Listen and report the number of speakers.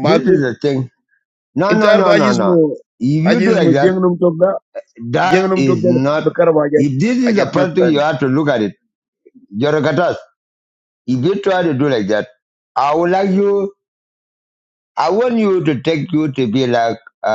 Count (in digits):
2